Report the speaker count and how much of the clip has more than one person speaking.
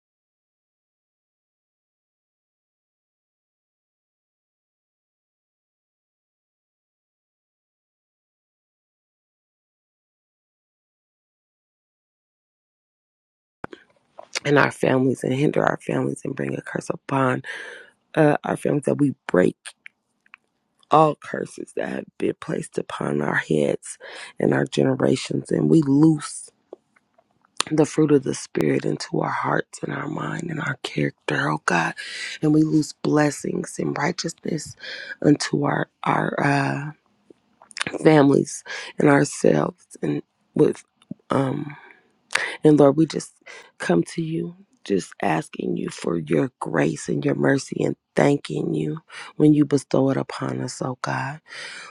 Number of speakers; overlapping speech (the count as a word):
one, no overlap